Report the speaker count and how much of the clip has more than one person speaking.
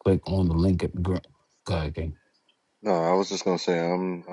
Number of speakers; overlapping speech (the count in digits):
2, no overlap